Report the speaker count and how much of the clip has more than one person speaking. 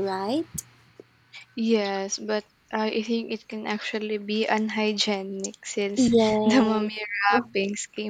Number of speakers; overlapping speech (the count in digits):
2, about 11%